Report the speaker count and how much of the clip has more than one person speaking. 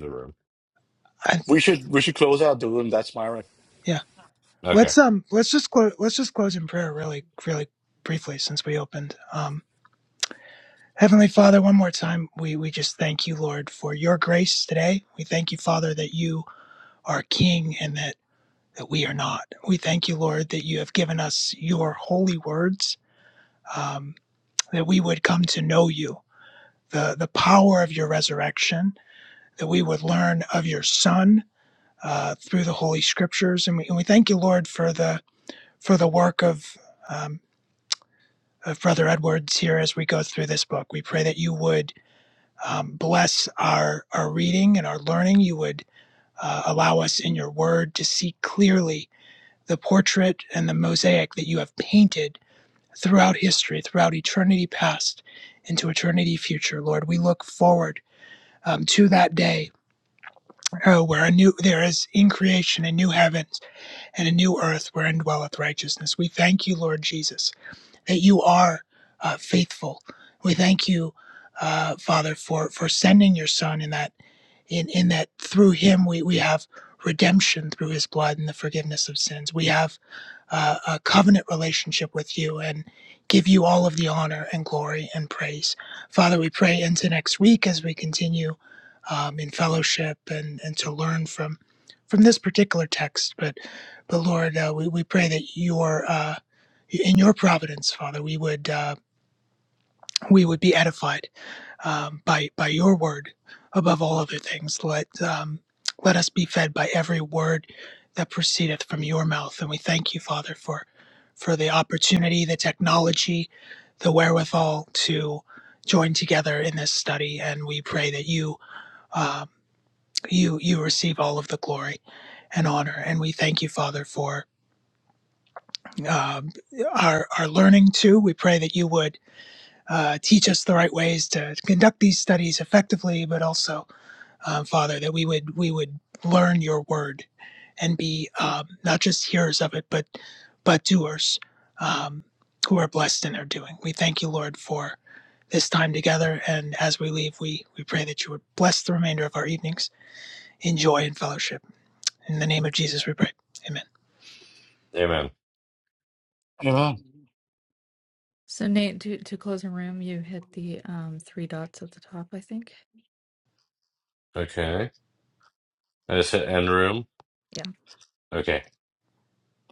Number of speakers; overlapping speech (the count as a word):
four, under 1%